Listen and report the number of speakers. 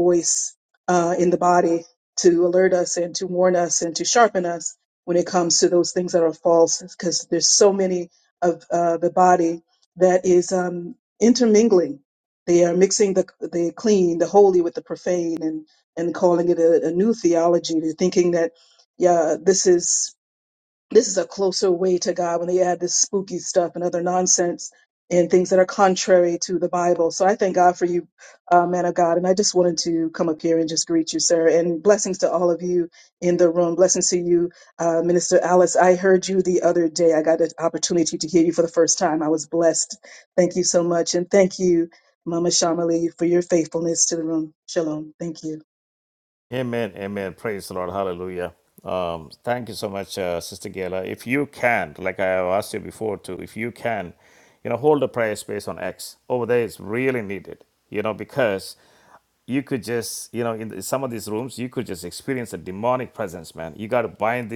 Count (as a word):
two